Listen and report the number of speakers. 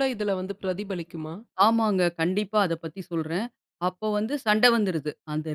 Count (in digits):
2